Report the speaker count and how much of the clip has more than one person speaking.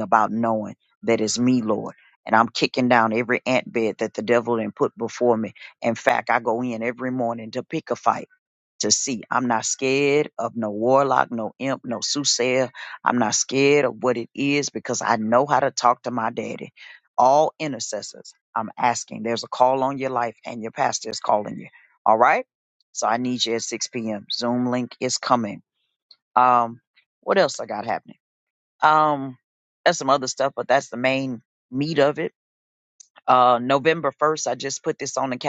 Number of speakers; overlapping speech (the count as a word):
one, no overlap